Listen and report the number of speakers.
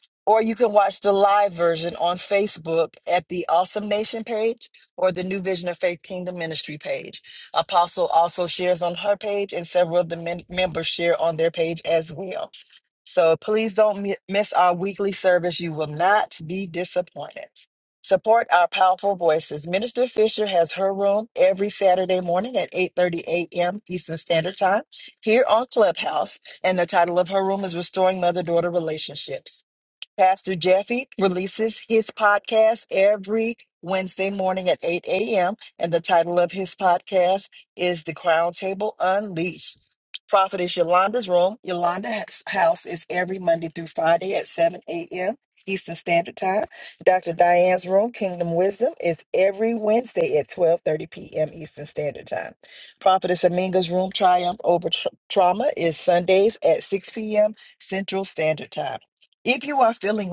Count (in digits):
1